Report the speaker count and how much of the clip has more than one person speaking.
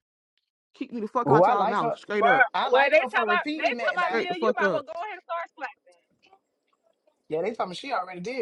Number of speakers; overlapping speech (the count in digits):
3, about 39%